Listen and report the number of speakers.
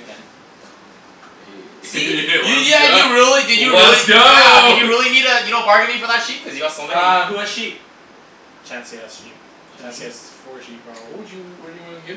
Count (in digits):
4